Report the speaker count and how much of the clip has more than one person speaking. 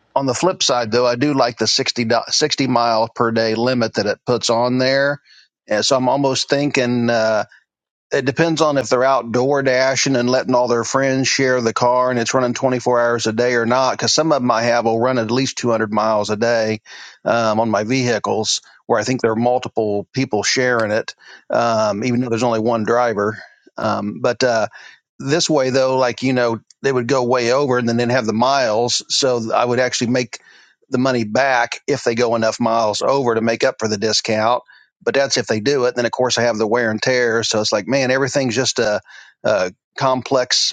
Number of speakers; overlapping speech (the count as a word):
one, no overlap